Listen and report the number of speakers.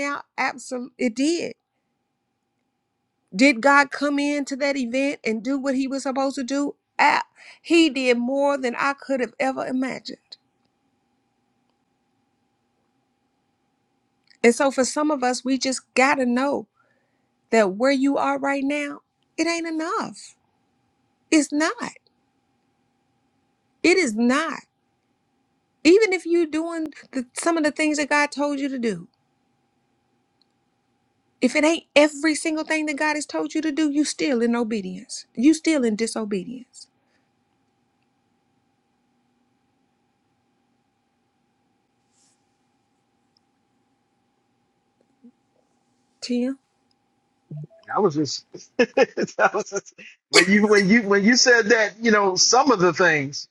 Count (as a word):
two